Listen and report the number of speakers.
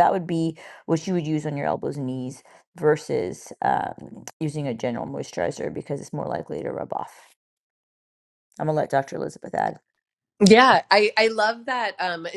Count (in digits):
2